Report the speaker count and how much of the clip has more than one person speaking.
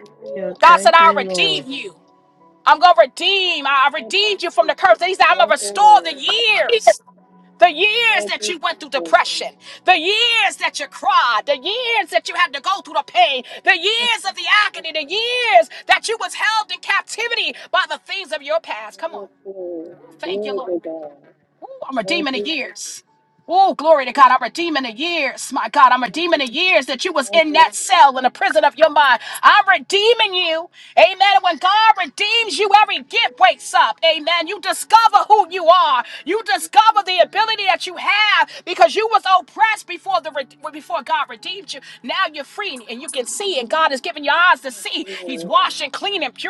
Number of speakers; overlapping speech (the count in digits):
2, about 15%